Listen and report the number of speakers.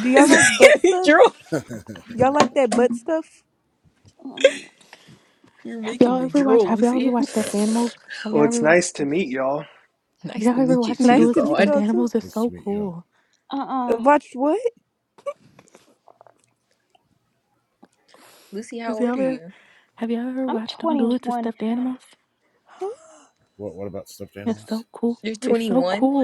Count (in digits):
6